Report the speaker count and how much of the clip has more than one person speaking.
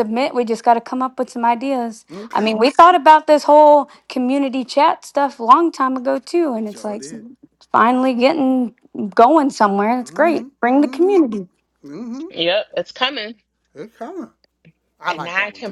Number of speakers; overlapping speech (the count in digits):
3, about 16%